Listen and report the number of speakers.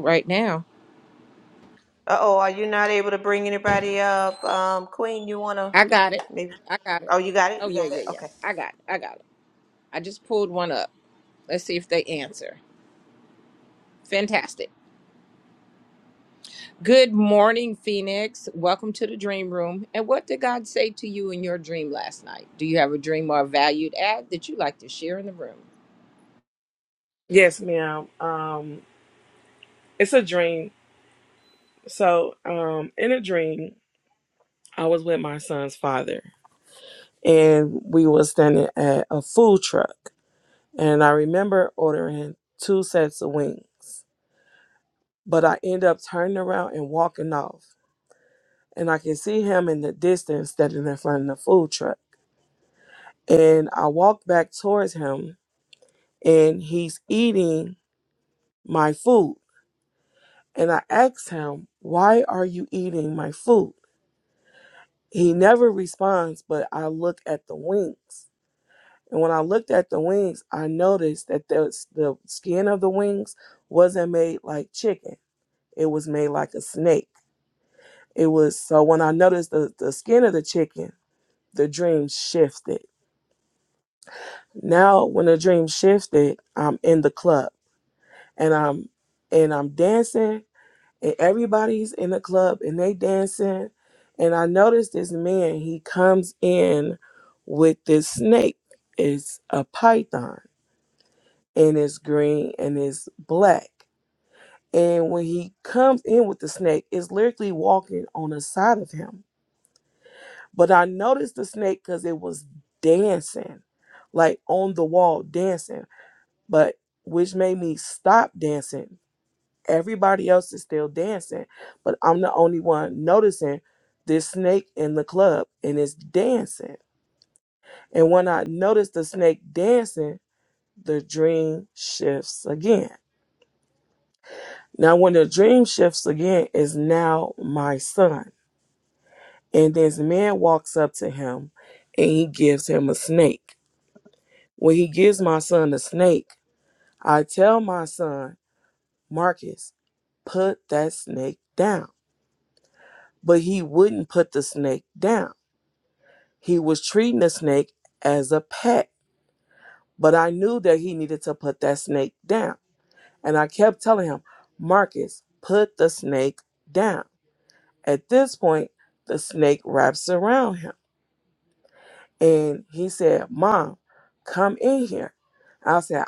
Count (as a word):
three